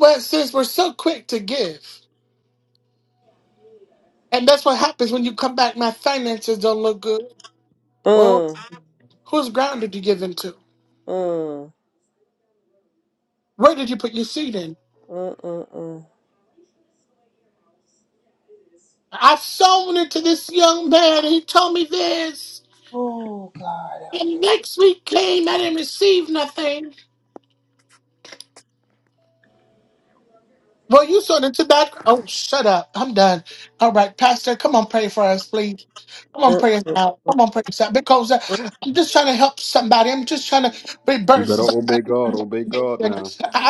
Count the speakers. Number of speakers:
three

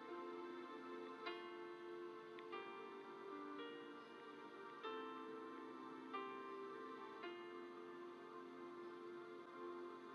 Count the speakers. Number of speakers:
zero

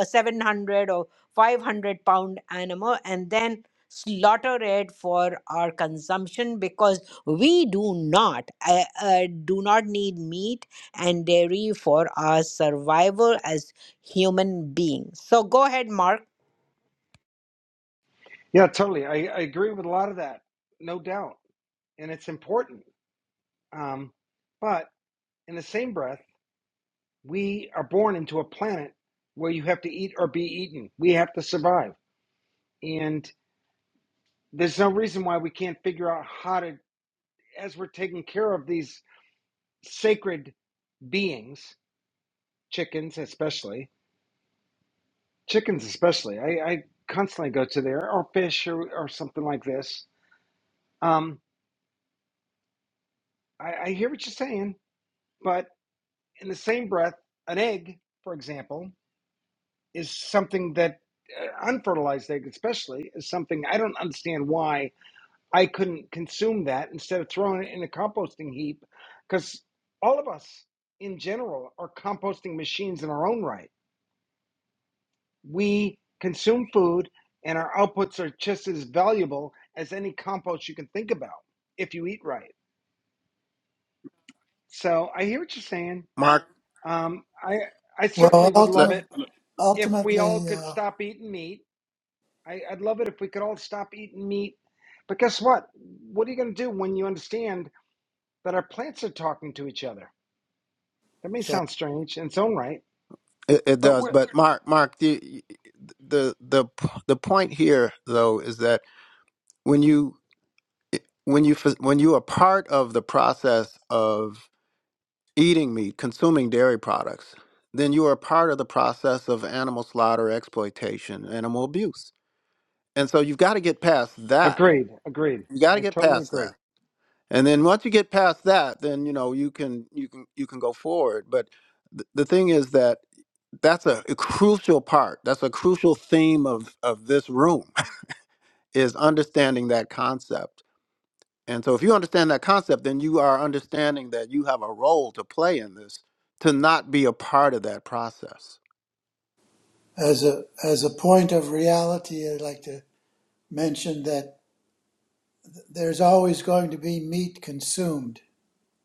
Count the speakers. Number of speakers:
four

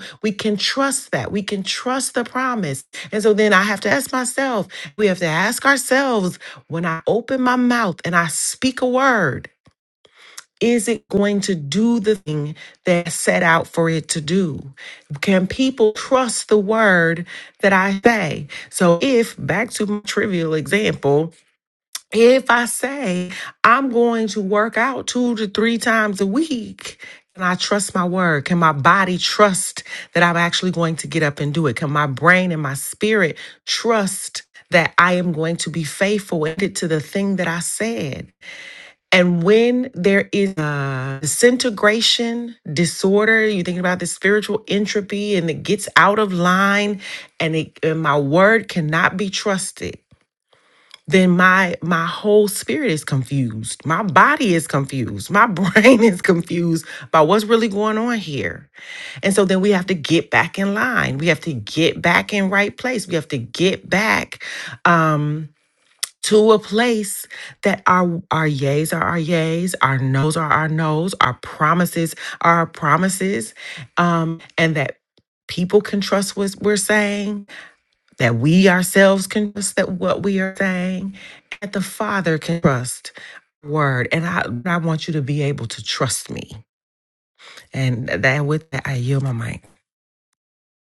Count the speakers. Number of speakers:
one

